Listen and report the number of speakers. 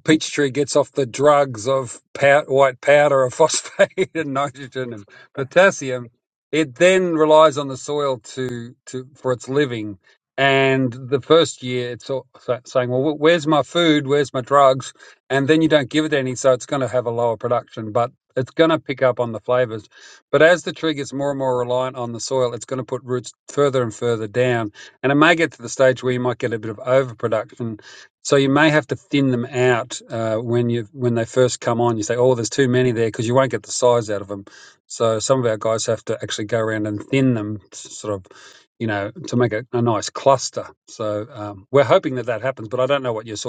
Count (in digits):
1